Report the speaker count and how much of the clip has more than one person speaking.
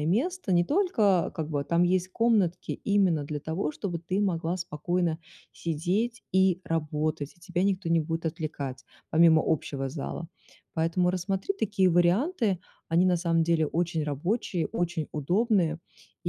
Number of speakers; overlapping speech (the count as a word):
one, no overlap